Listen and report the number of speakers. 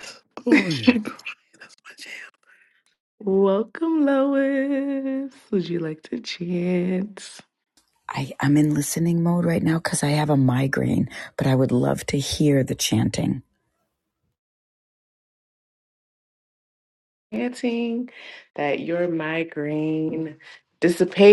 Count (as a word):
three